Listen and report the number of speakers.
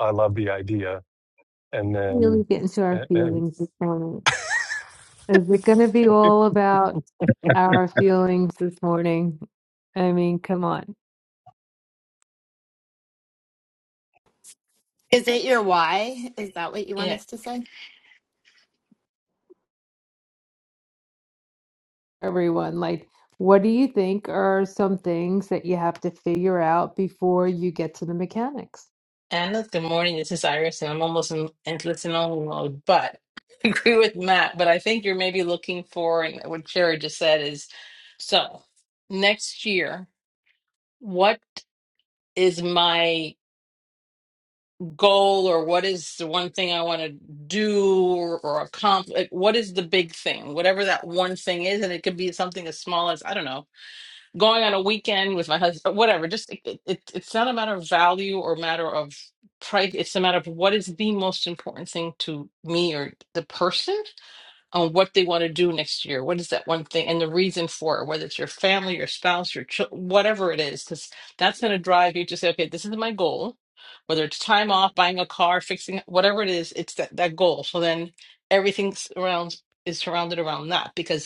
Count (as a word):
four